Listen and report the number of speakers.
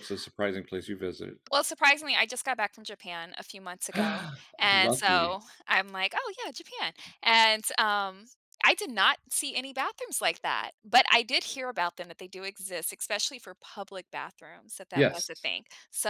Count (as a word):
two